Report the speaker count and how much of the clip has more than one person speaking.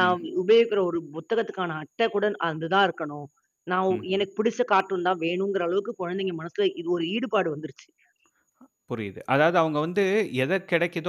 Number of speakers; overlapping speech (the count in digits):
2, about 3%